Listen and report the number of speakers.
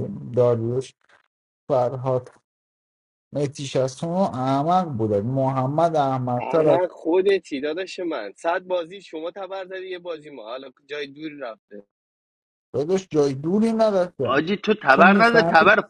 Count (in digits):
3